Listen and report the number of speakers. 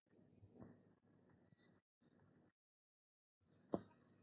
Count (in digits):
0